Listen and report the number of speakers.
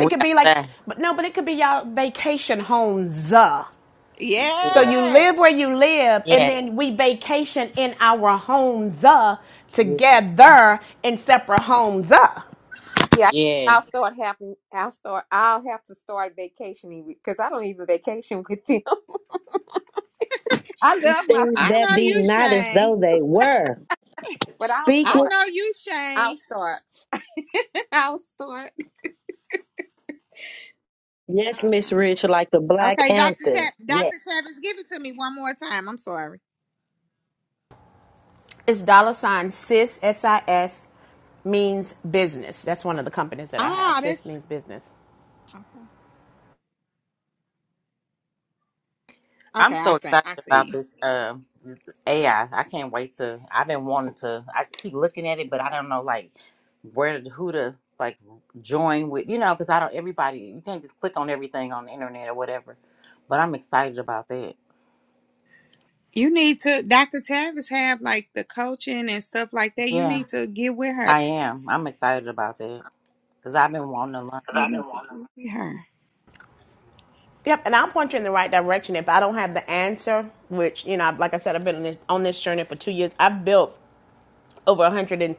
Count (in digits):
5